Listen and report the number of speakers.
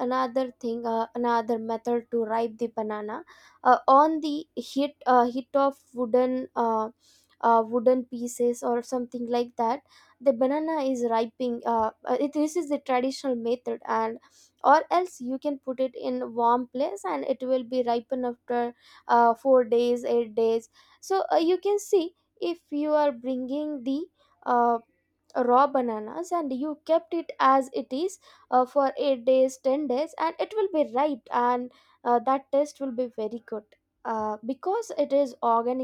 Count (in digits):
1